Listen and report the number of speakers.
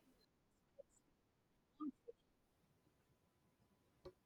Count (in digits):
0